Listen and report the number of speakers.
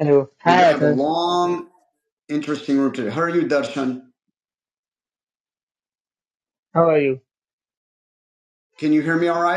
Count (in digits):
2